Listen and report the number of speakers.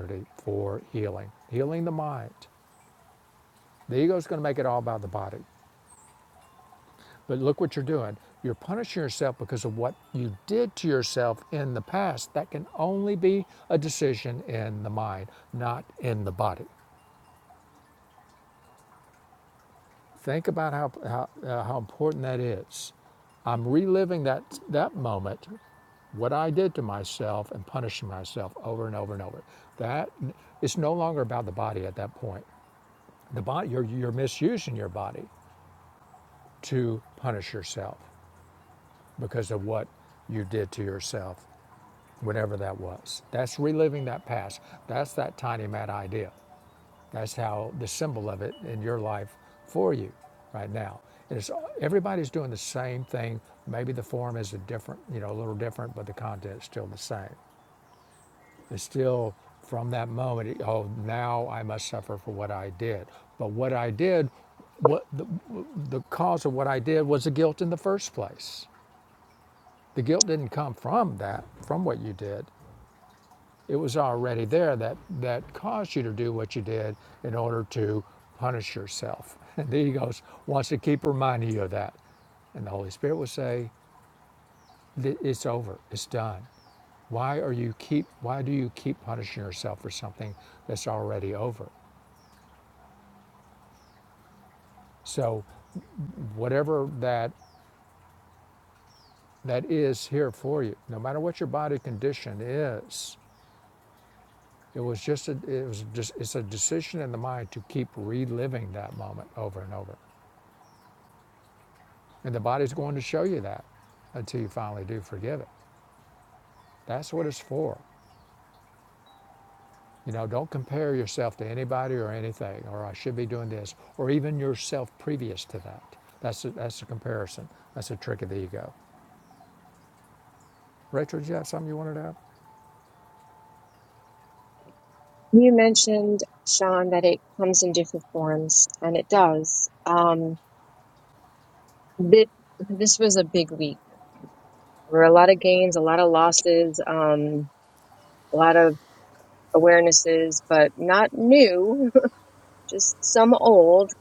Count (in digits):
2